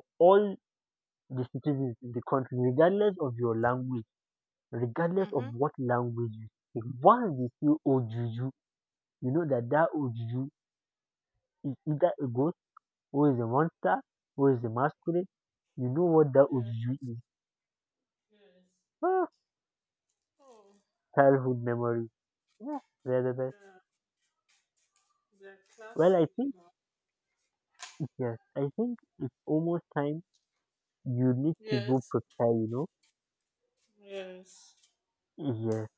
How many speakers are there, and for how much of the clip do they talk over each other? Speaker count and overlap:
2, about 2%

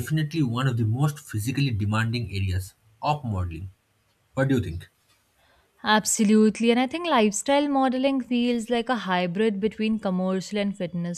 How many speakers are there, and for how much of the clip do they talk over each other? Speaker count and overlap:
2, no overlap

